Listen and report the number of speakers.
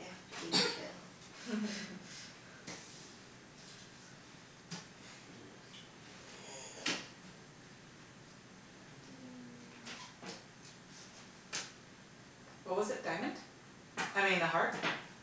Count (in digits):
2